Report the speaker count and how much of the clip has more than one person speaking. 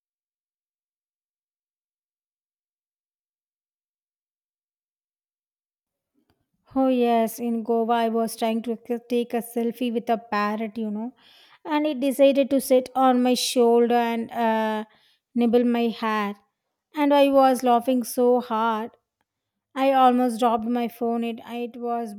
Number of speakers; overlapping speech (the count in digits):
1, no overlap